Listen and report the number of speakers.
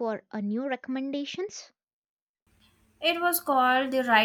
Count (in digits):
2